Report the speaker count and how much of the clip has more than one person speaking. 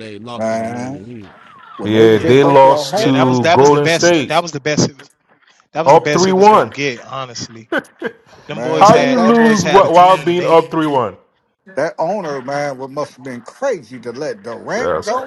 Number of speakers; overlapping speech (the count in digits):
4, about 43%